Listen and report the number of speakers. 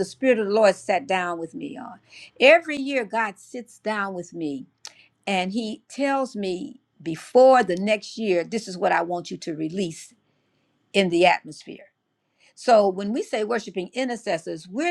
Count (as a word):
one